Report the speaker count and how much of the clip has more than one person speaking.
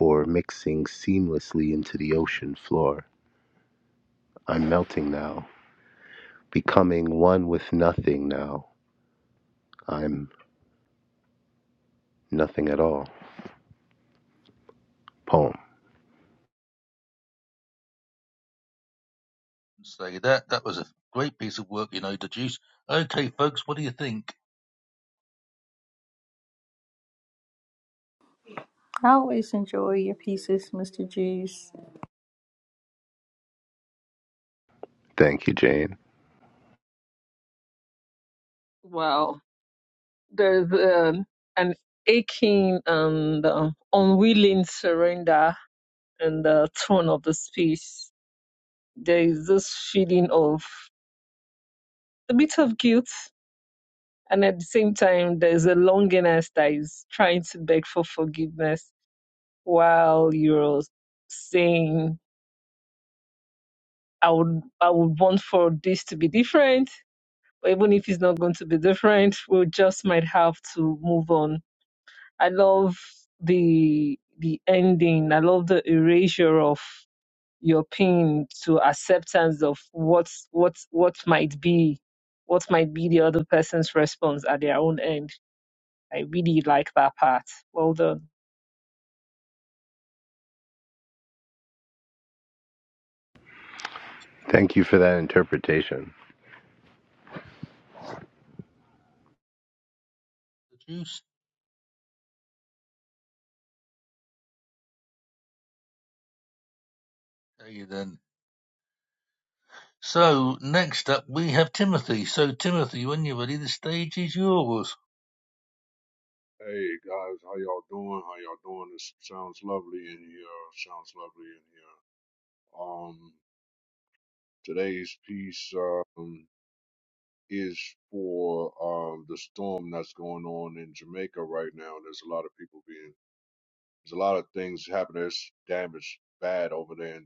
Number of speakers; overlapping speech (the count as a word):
five, no overlap